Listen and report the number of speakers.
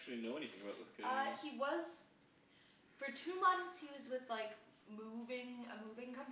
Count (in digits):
2